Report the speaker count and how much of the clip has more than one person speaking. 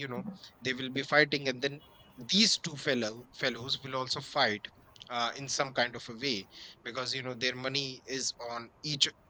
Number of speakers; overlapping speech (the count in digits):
1, no overlap